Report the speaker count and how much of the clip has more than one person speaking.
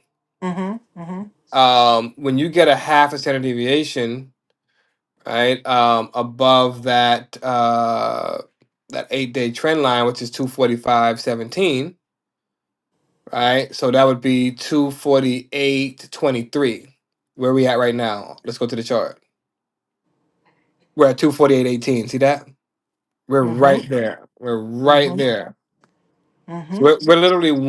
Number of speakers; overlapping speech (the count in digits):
2, about 3%